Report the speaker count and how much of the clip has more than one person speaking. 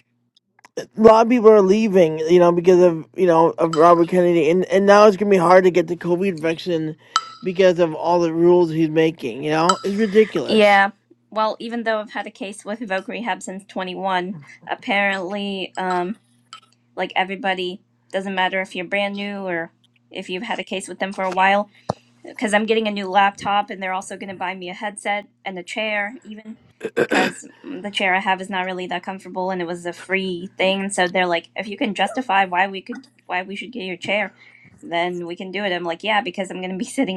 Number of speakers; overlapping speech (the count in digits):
2, under 1%